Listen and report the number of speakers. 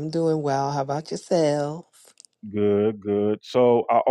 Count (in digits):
2